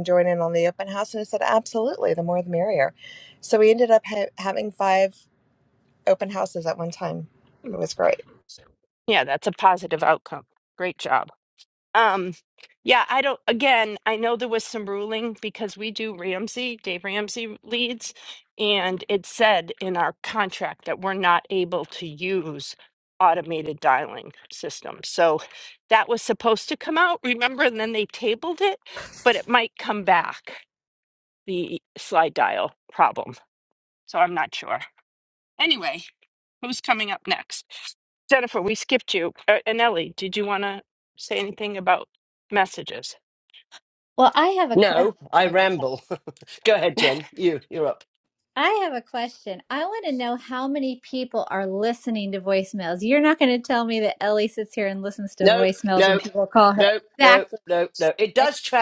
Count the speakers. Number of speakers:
4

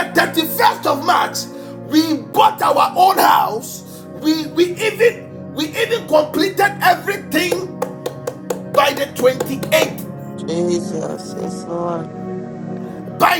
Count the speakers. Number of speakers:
2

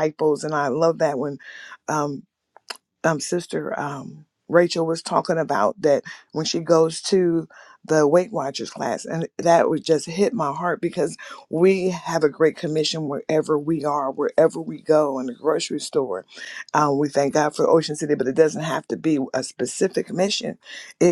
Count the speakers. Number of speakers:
1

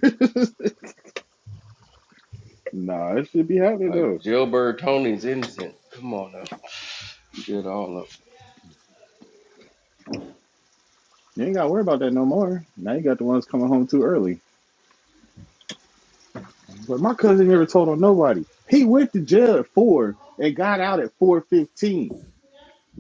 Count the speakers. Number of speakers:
2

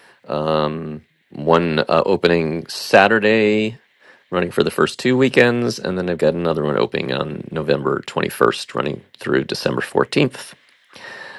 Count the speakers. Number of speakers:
1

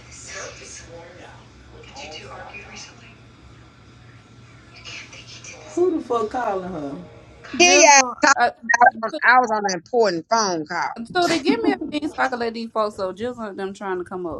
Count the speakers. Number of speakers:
3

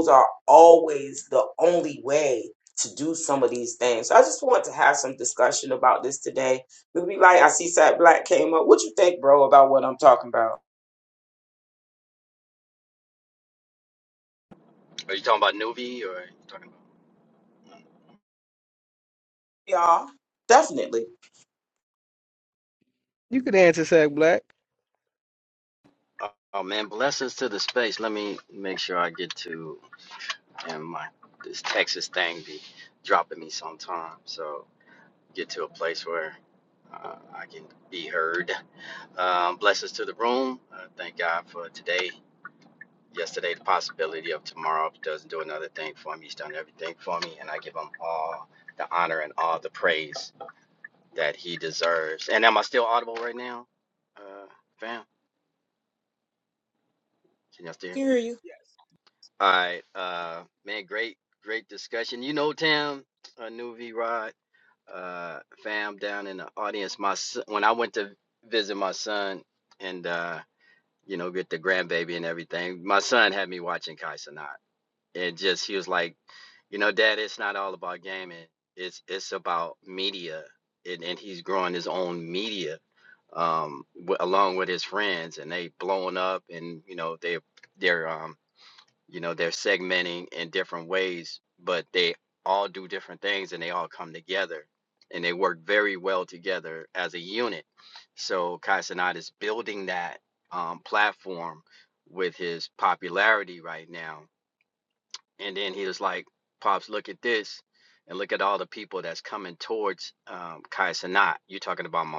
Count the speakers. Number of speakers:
3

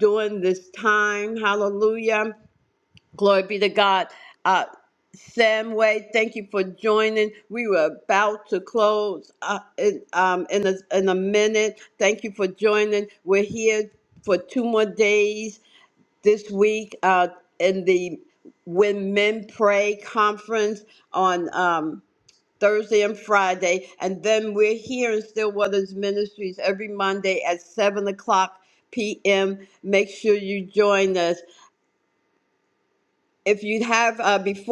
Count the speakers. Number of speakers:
1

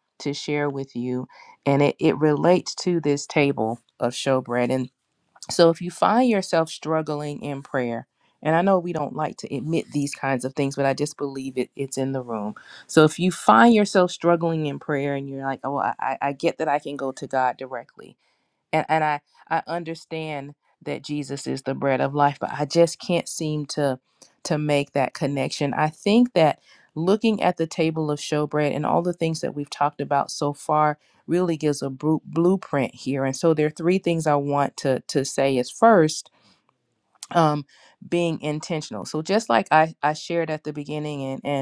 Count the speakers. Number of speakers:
1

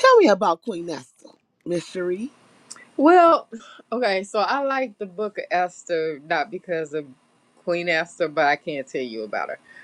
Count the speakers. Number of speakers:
2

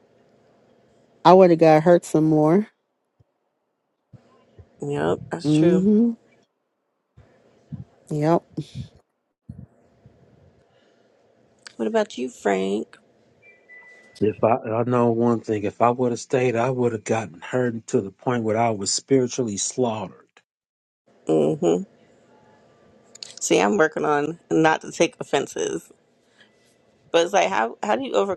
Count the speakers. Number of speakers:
3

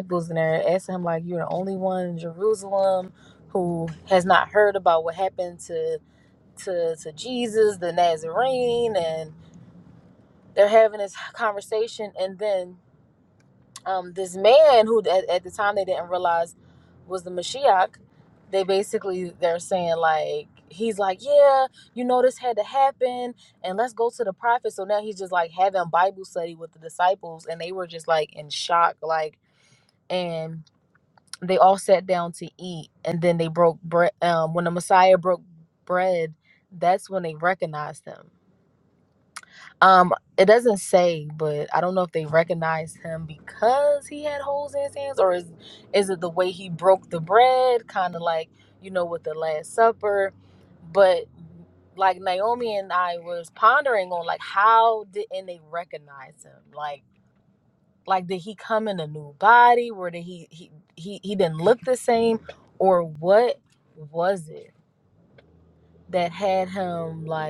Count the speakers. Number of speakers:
1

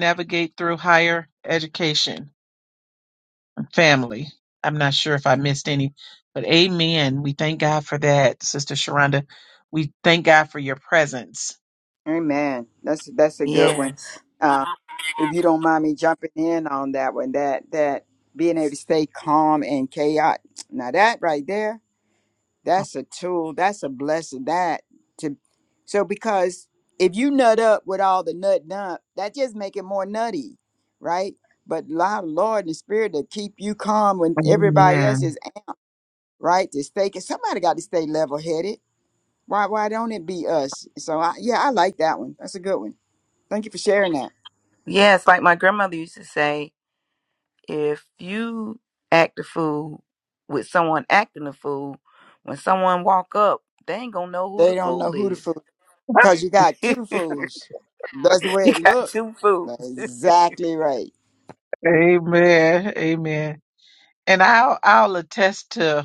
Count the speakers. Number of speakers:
3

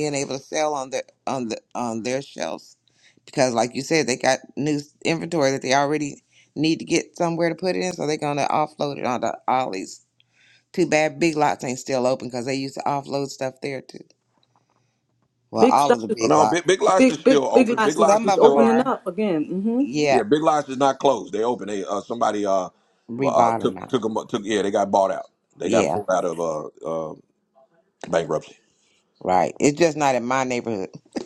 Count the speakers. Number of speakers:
3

